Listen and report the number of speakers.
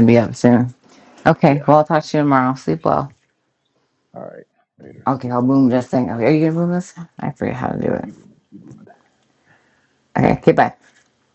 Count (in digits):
2